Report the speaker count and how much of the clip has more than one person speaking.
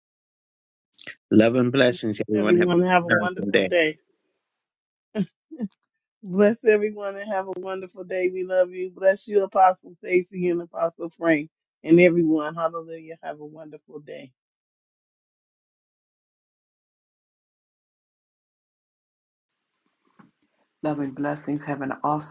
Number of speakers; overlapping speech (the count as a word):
three, about 5%